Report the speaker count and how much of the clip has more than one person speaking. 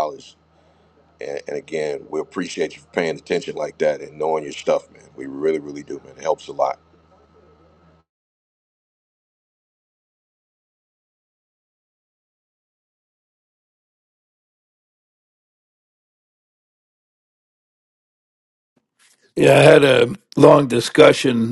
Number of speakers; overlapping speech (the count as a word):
two, no overlap